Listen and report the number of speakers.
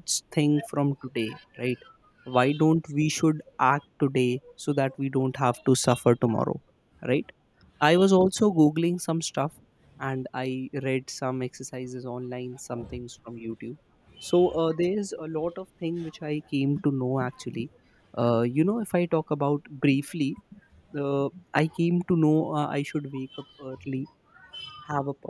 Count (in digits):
1